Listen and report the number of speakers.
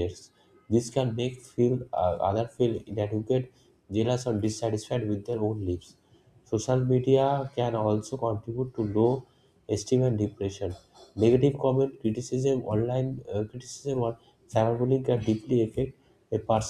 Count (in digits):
1